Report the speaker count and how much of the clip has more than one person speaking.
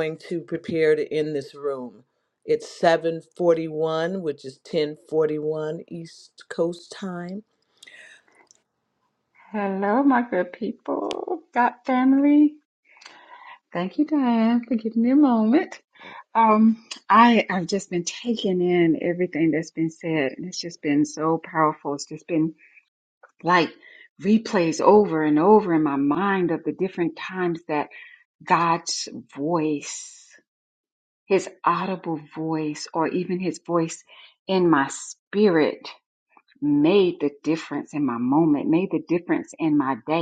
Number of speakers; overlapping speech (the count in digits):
2, no overlap